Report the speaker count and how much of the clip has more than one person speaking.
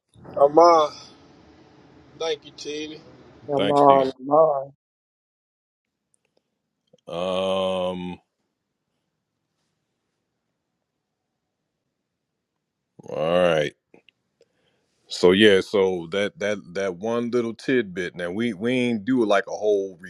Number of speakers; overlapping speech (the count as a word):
three, about 3%